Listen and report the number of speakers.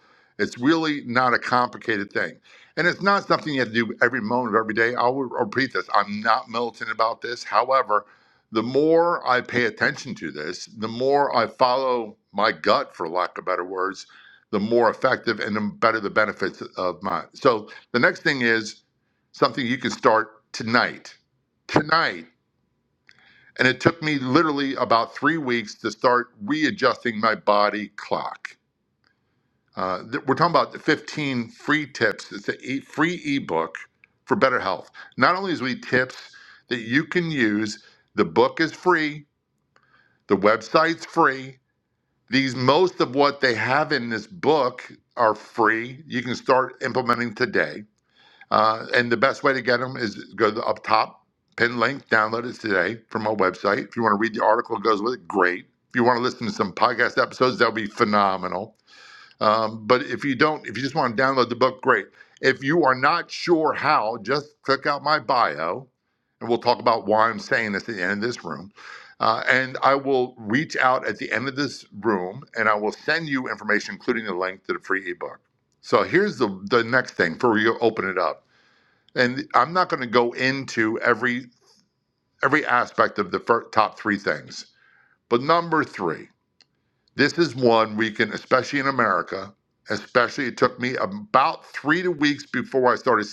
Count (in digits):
1